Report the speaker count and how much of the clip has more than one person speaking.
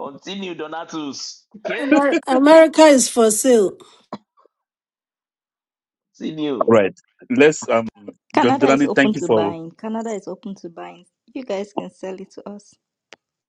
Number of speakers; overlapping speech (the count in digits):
4, about 10%